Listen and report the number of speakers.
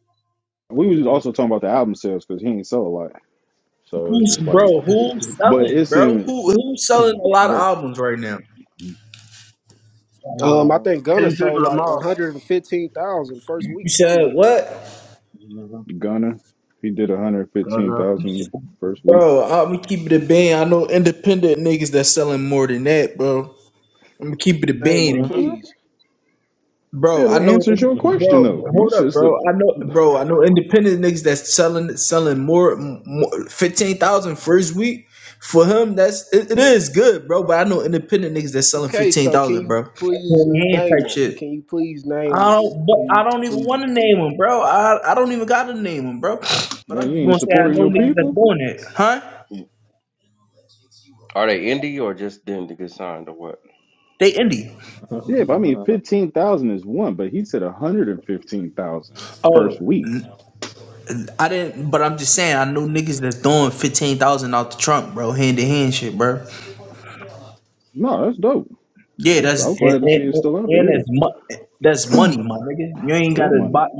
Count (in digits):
5